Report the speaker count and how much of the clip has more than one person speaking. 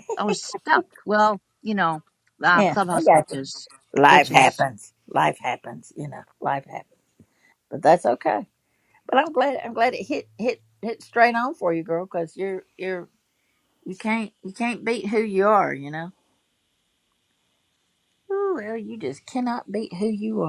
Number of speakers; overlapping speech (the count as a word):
two, about 6%